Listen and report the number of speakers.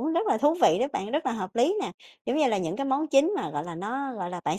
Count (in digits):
1